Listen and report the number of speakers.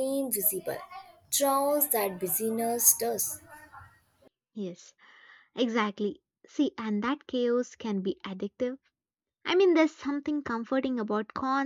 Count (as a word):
two